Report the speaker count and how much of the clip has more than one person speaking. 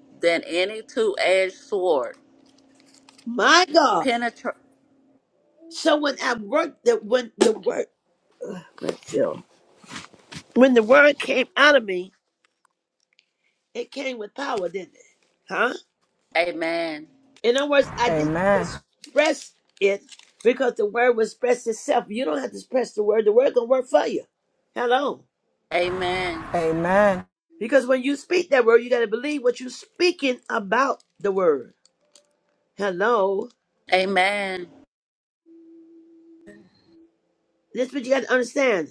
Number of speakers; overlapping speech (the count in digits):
3, about 2%